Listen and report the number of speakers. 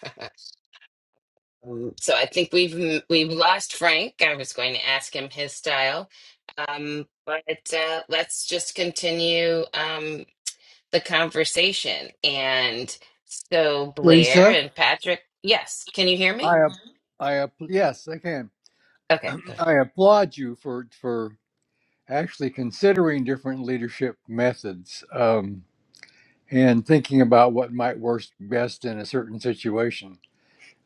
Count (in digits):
2